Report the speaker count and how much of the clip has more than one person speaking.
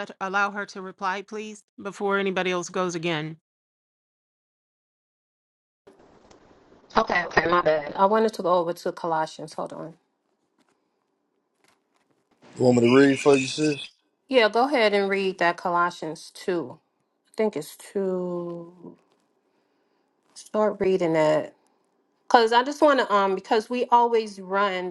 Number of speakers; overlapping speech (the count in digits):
3, no overlap